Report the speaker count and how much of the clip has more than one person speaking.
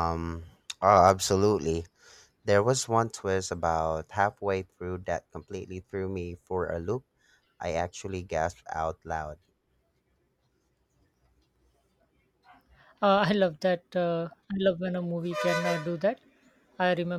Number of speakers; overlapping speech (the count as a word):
two, no overlap